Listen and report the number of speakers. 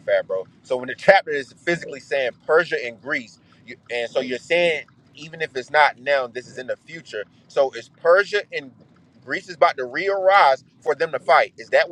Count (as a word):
one